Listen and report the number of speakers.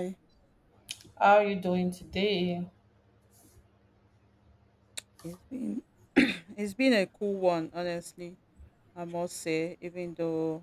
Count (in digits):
2